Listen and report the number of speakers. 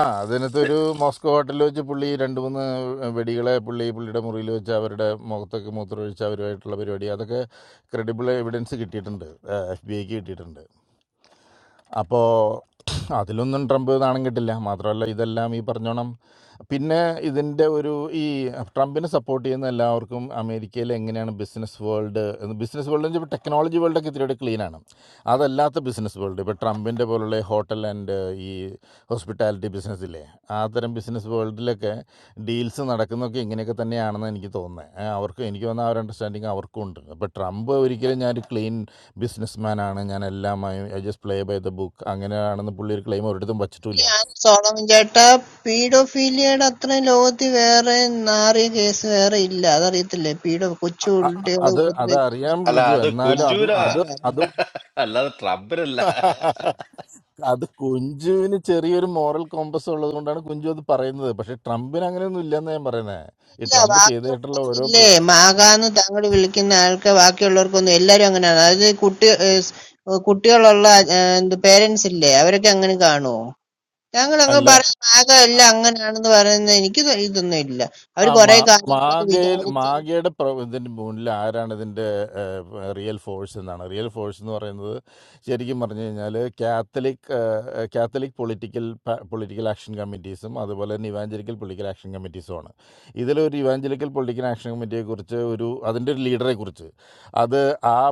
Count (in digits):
3